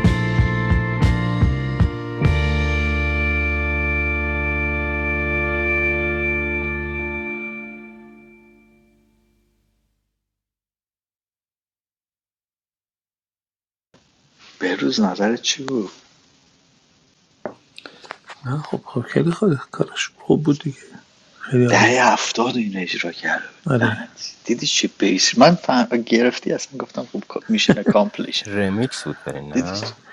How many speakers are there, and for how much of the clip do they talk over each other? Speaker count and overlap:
three, about 4%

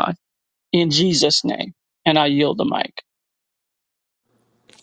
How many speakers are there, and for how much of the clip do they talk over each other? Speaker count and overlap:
one, no overlap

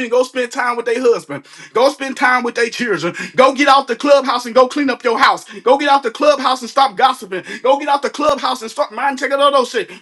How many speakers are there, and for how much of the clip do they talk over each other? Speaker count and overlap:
one, no overlap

